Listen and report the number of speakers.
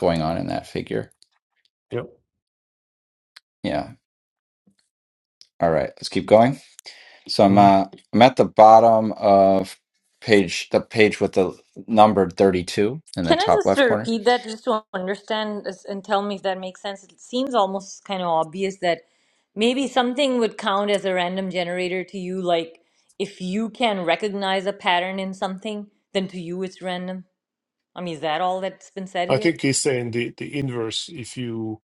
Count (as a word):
three